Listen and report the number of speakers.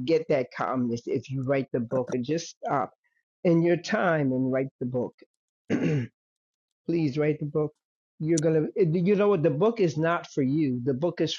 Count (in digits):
1